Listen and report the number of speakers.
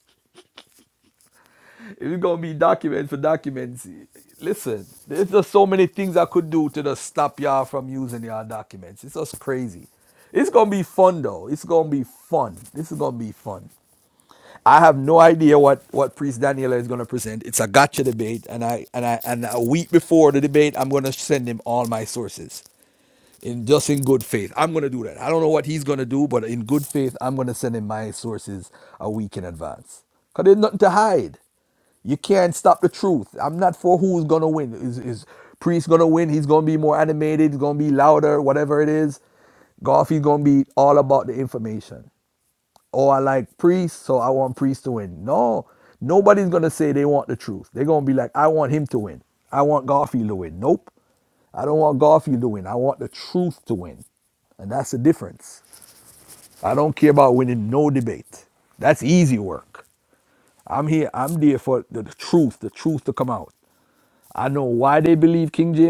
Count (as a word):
one